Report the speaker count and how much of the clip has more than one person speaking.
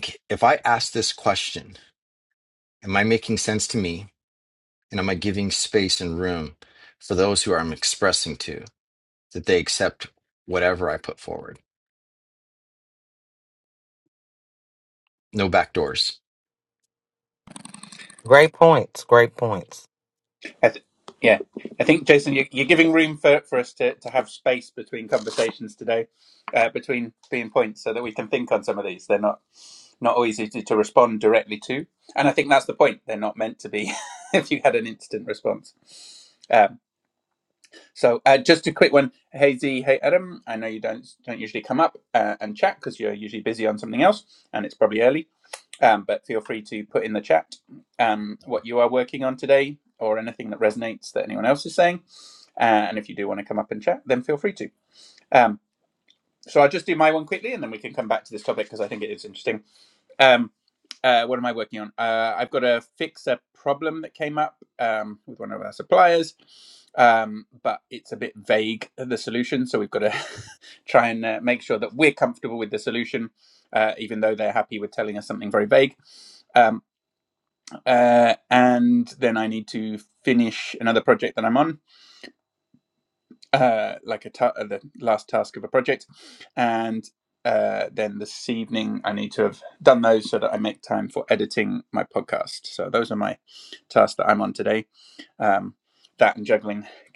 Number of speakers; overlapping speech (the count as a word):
three, no overlap